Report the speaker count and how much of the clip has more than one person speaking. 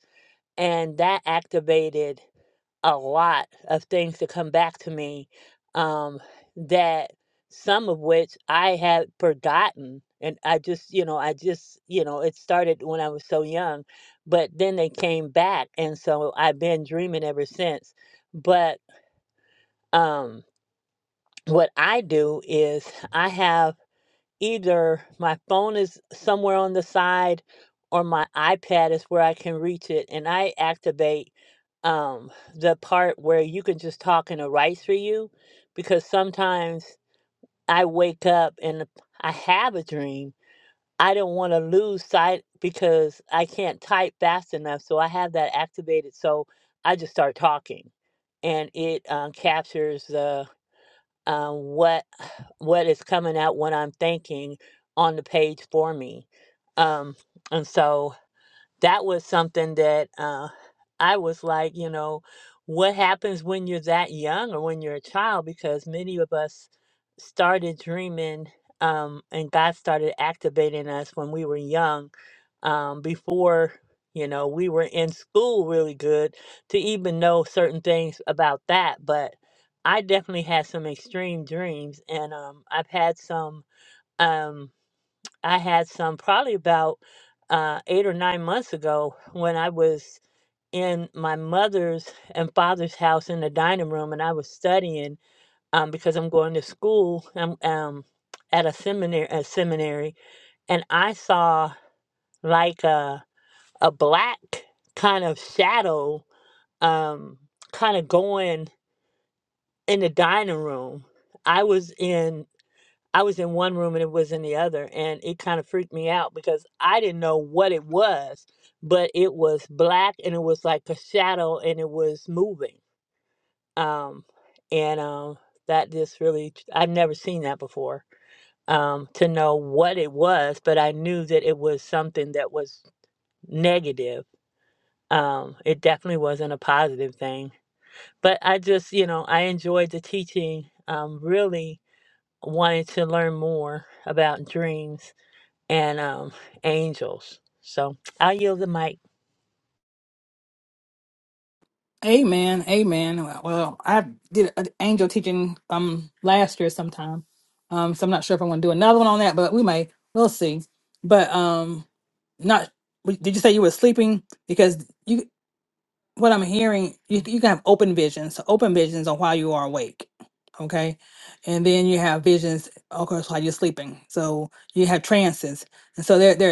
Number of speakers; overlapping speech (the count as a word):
two, no overlap